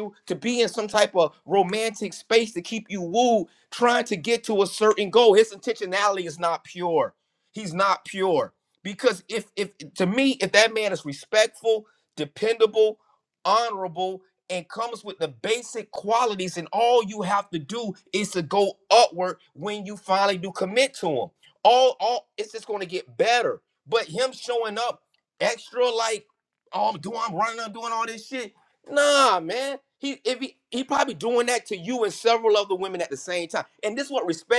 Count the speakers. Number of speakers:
one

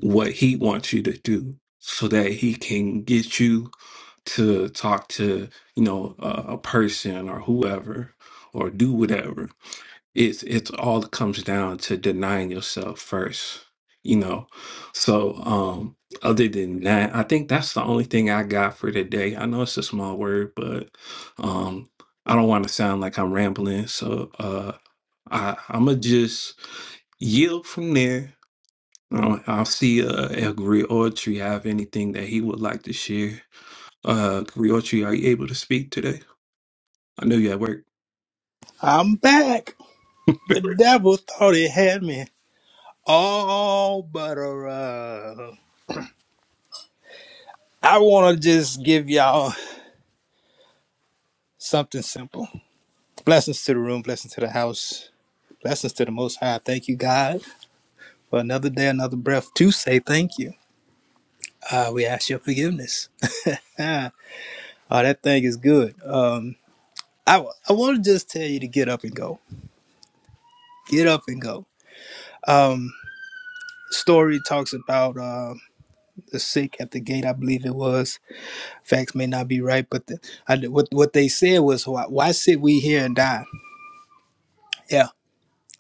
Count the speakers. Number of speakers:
two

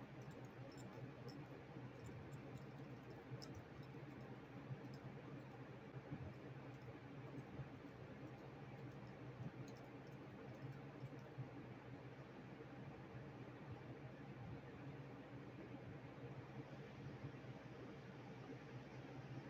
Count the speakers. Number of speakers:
zero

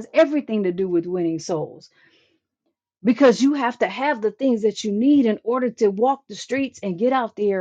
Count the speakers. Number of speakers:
one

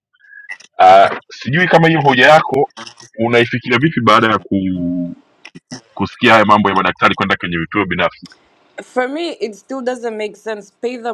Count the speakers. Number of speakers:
two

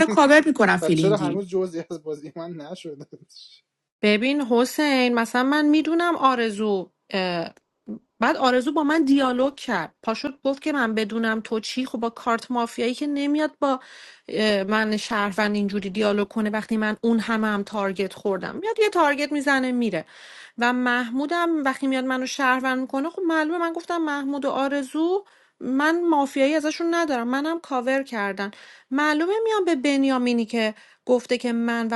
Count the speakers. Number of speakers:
three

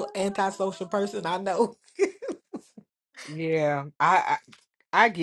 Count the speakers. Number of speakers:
two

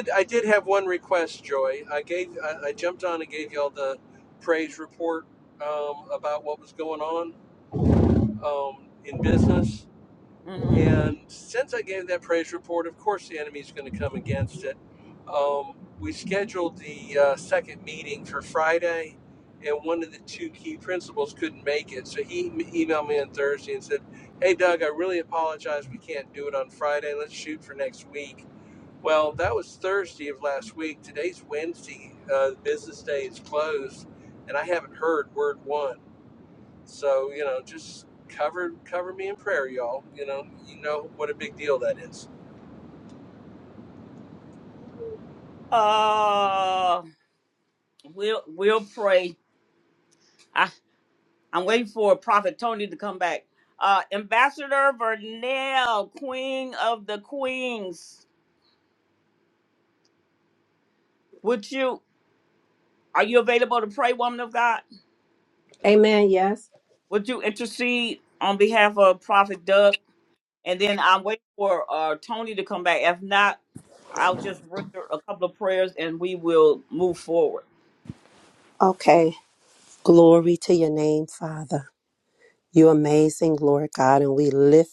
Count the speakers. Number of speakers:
three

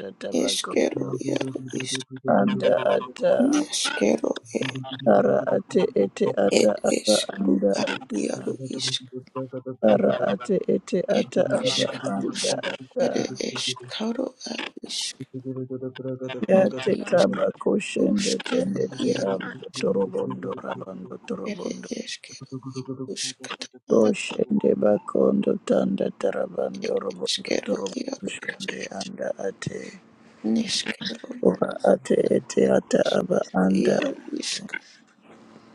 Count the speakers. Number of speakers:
three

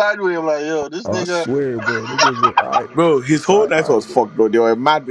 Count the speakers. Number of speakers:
three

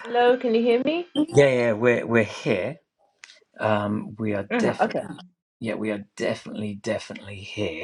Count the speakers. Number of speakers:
two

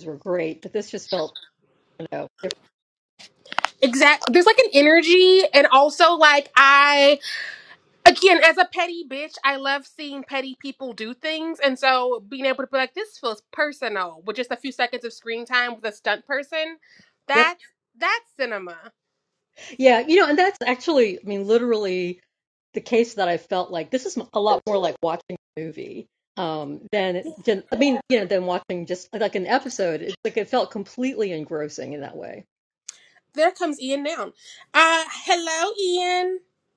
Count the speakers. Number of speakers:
two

